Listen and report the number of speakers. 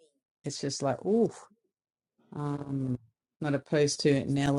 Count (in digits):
1